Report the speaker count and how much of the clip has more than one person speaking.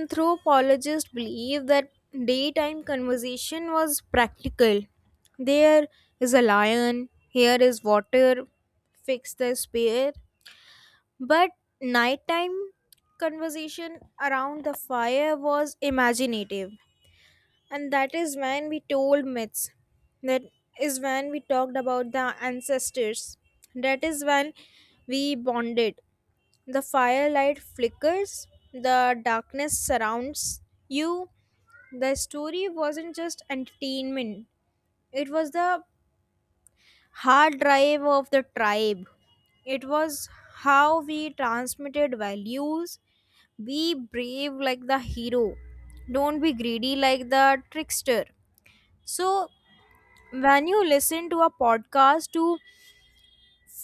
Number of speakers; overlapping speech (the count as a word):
one, no overlap